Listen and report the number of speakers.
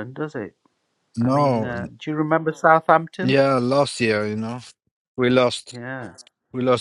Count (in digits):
2